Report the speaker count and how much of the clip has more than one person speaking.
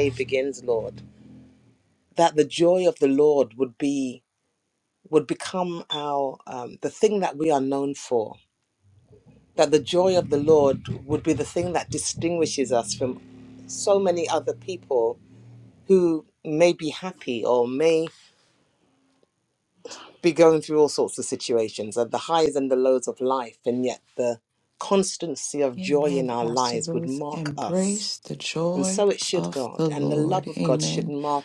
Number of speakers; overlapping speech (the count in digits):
2, about 14%